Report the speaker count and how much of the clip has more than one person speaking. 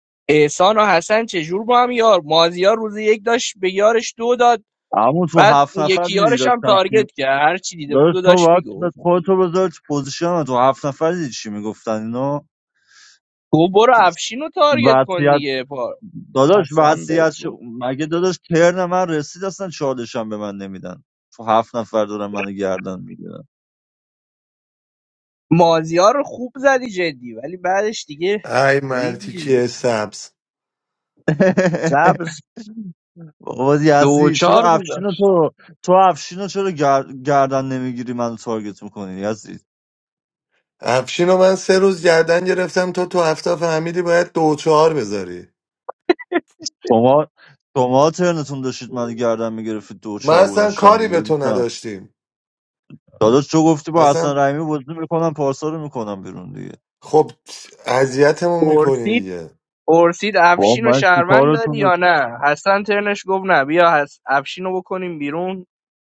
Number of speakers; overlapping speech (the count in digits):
3, about 13%